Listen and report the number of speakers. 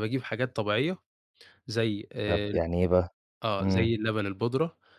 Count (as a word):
two